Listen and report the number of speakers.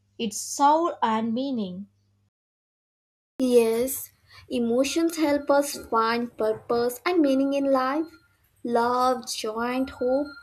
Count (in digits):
2